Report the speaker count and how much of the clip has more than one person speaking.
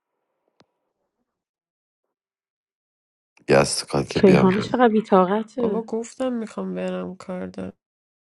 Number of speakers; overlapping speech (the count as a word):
three, about 9%